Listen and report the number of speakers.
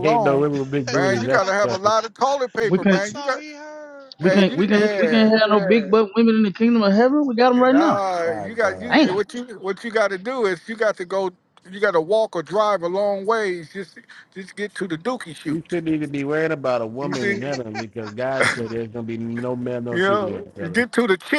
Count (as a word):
four